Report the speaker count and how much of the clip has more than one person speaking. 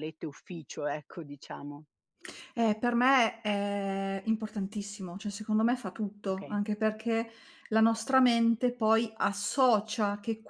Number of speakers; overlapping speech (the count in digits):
2, about 2%